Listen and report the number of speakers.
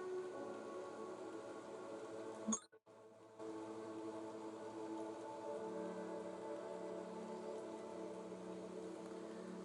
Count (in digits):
0